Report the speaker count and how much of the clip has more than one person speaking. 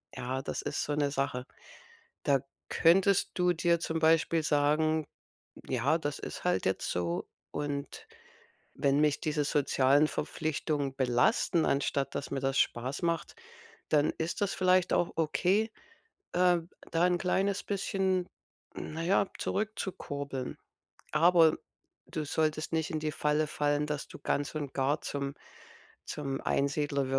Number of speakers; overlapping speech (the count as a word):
one, no overlap